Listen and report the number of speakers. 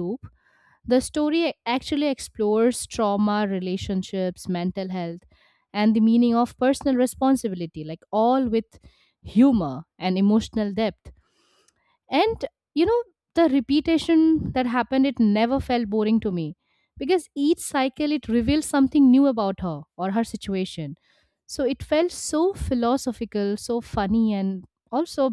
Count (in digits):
1